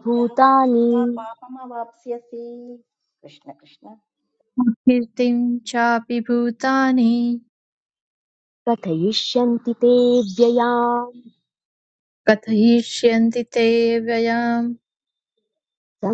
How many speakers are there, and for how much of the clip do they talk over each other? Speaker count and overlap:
three, about 6%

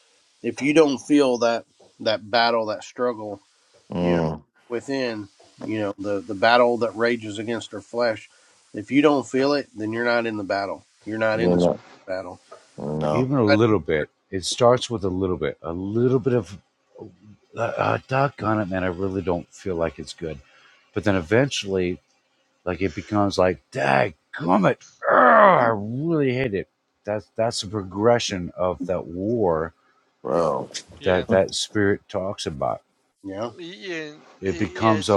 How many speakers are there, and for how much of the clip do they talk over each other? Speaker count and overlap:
four, about 5%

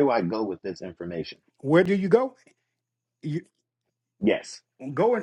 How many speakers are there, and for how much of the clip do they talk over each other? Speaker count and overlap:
two, no overlap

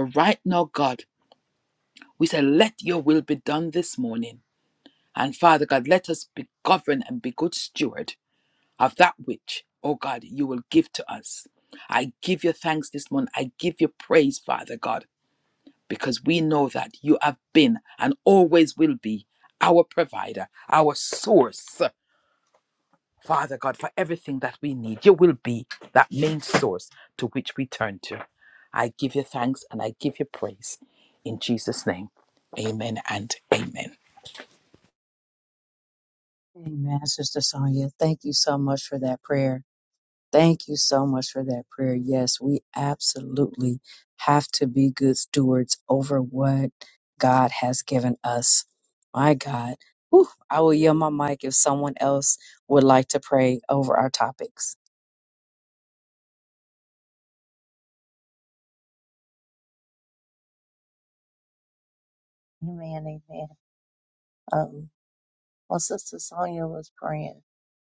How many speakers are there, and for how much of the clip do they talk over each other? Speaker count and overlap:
three, no overlap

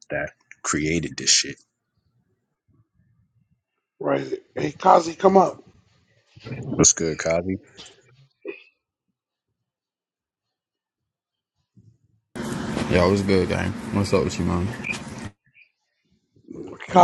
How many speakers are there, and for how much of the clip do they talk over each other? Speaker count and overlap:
three, no overlap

